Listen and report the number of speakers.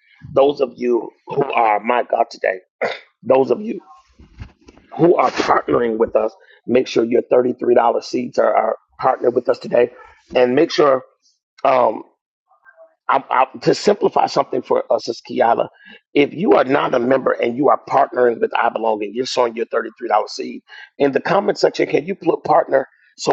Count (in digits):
1